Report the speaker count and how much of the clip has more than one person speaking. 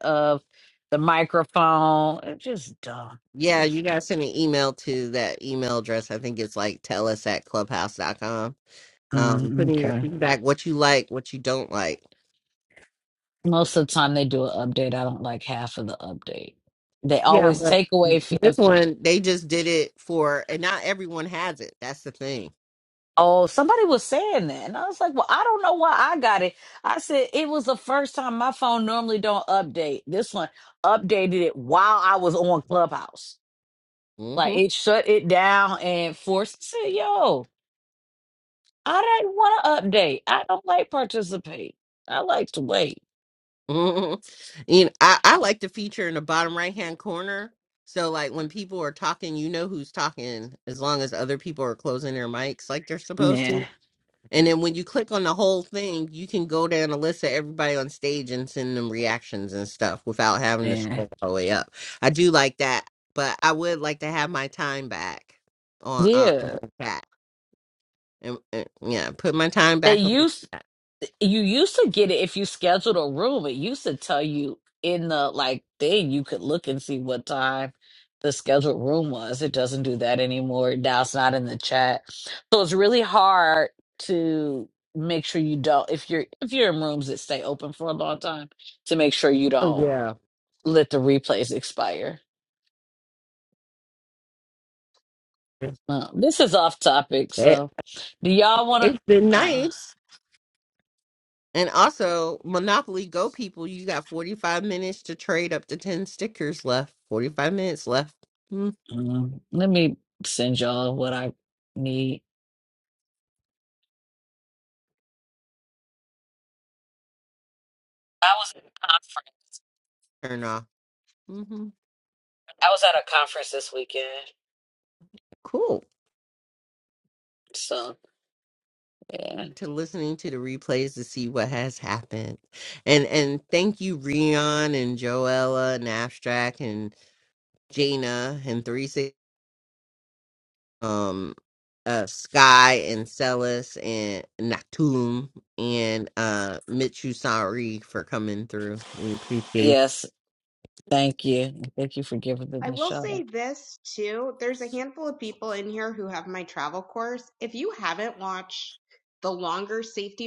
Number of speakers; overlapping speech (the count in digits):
3, about 4%